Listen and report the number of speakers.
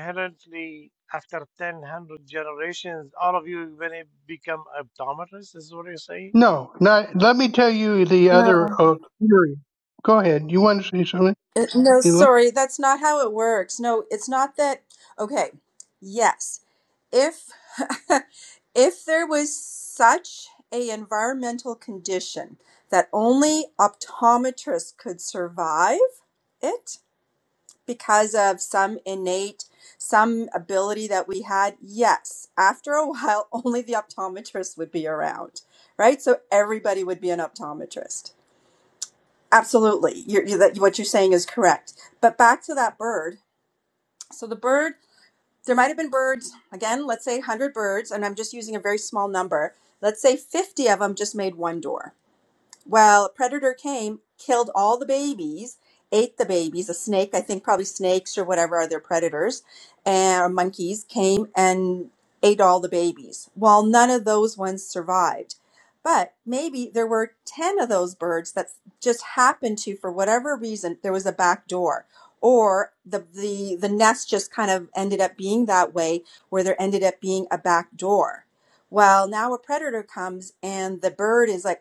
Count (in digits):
3